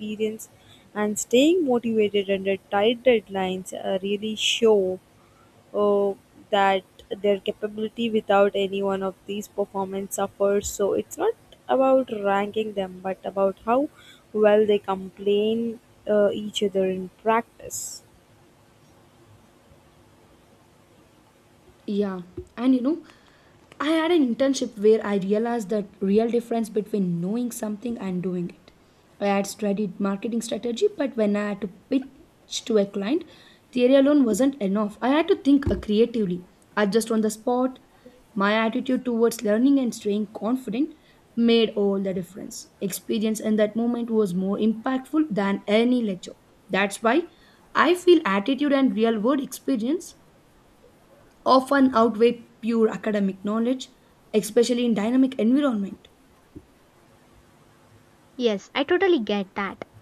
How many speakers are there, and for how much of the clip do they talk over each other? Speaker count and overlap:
three, no overlap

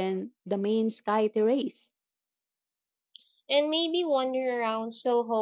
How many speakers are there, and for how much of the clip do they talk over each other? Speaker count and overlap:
two, no overlap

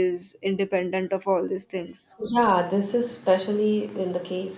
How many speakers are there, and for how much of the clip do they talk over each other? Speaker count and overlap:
two, no overlap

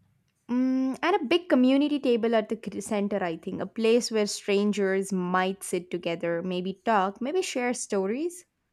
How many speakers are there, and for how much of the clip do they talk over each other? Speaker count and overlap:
one, no overlap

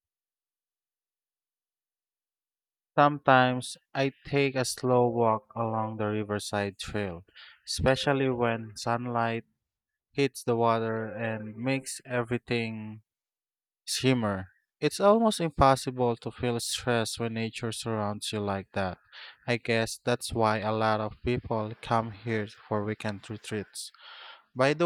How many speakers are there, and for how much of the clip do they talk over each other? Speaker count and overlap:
one, no overlap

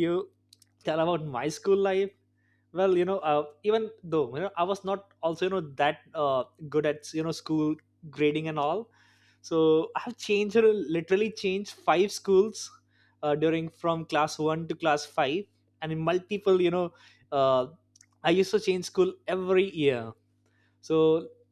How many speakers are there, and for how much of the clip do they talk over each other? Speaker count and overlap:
one, no overlap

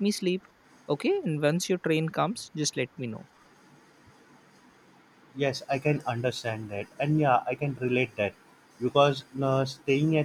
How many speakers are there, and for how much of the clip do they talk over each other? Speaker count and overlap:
two, no overlap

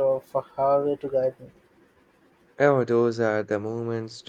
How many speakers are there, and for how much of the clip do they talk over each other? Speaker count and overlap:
two, no overlap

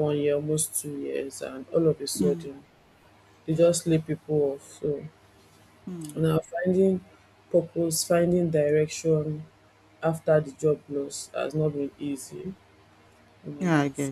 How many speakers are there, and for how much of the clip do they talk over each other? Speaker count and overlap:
two, about 3%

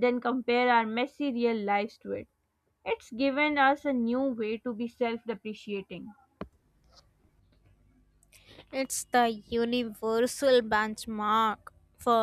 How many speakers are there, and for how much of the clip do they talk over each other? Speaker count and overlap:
two, no overlap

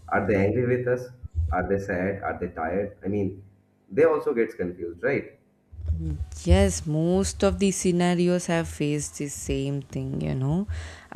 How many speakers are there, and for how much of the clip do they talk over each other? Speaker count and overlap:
two, no overlap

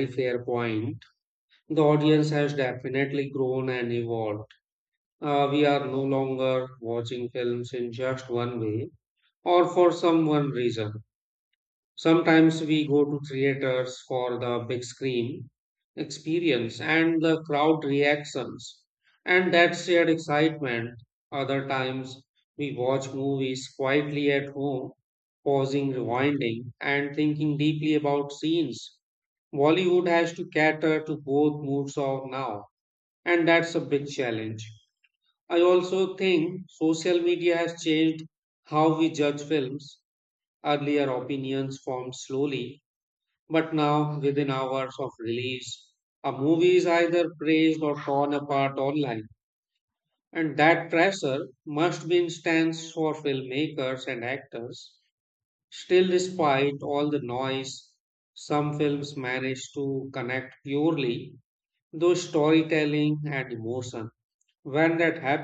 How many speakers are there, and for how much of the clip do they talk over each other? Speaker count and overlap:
one, no overlap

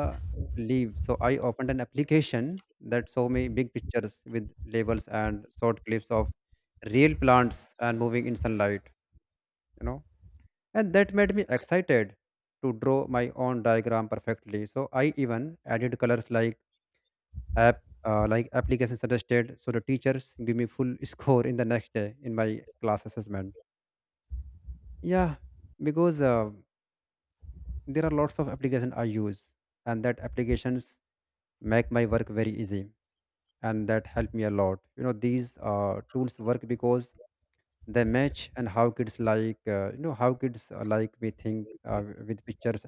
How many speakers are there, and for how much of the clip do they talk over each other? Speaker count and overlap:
one, no overlap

